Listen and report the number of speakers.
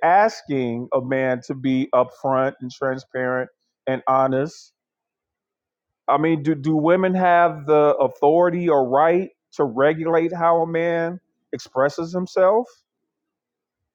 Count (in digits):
1